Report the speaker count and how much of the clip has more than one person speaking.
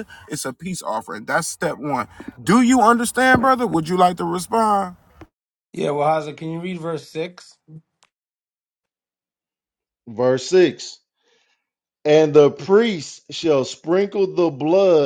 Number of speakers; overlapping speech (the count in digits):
3, no overlap